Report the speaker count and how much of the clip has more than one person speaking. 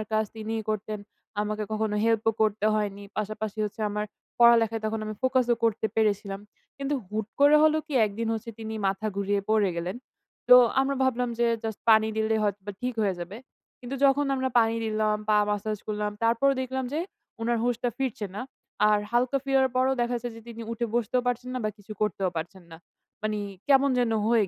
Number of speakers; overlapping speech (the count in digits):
1, no overlap